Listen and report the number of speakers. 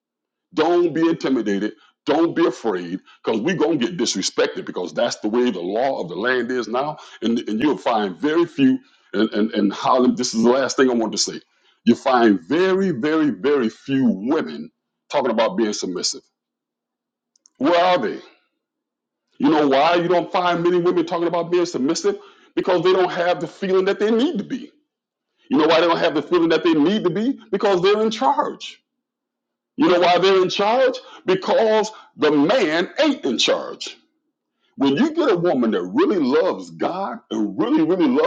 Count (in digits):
1